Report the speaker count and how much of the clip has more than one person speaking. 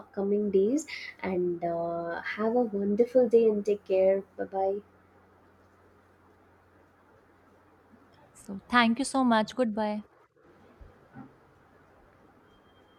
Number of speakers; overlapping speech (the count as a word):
two, no overlap